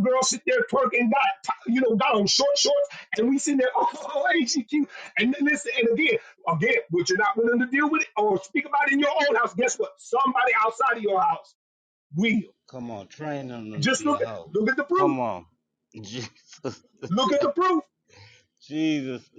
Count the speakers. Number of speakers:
2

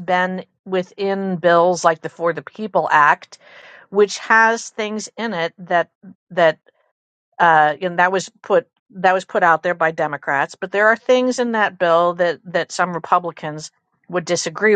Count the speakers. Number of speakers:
1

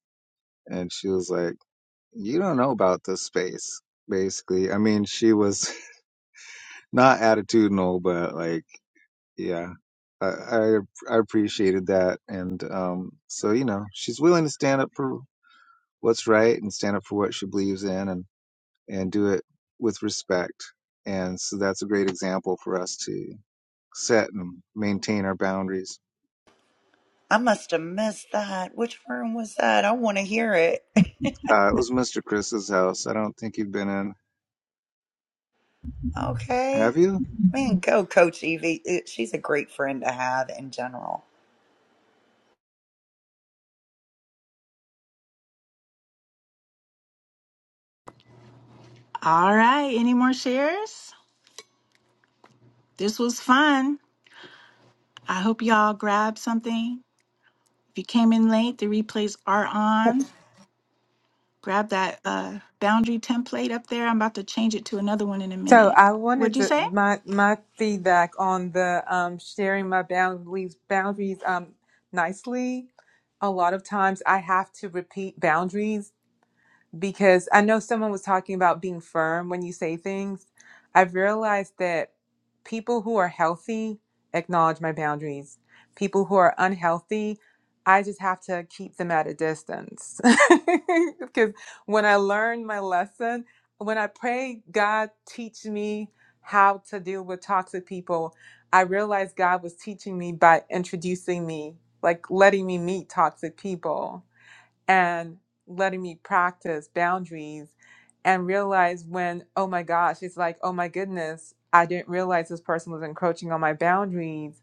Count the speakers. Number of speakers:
4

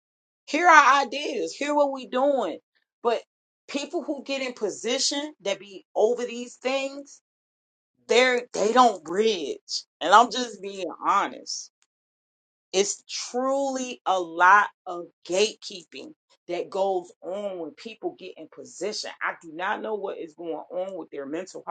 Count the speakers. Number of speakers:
1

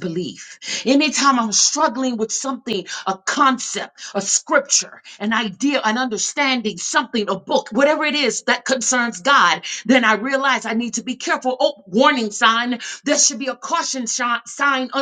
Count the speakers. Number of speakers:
1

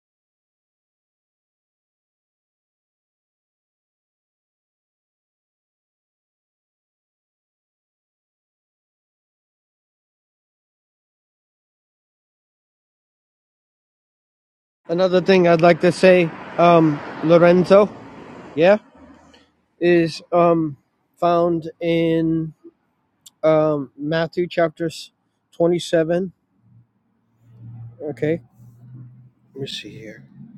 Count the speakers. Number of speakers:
1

